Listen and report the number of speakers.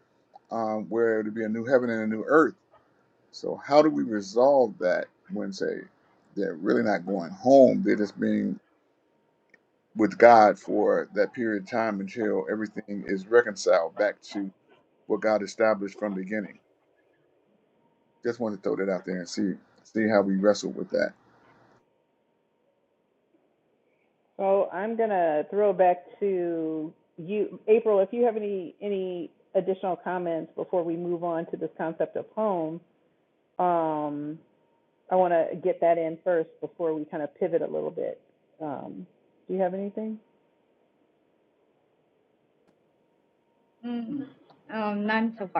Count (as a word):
three